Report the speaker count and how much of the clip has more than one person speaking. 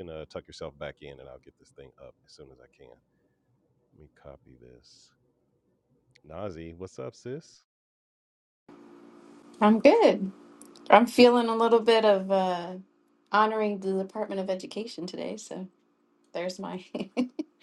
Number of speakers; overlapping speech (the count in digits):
2, no overlap